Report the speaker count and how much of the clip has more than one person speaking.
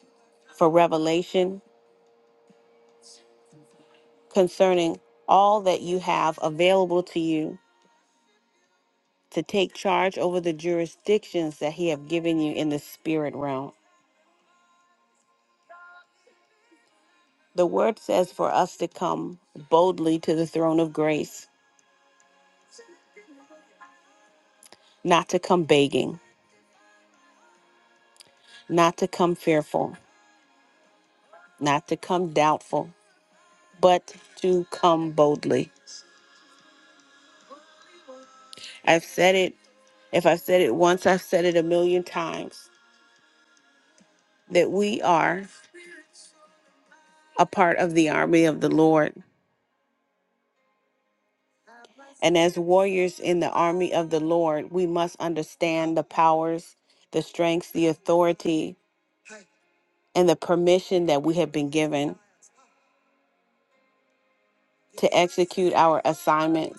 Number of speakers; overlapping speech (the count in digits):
1, no overlap